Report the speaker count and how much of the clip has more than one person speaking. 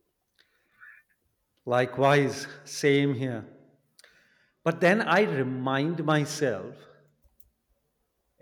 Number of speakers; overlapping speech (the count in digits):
1, no overlap